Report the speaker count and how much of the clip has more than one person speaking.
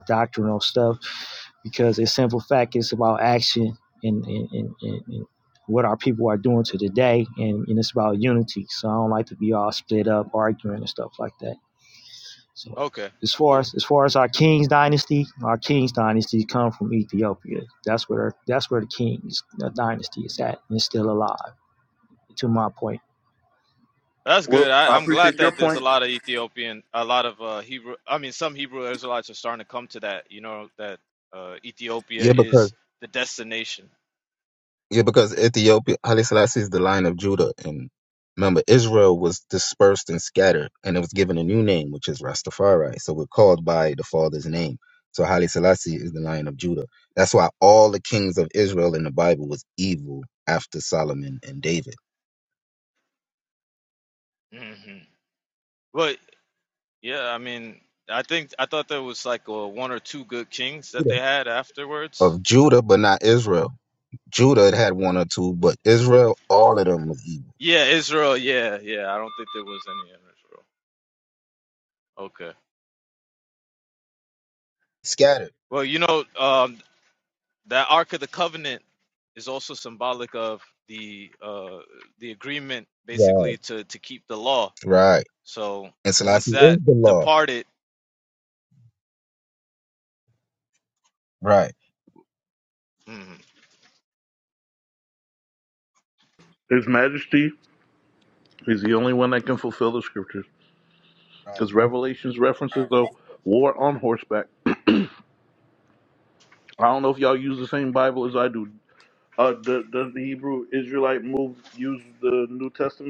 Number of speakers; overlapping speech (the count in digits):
4, about 3%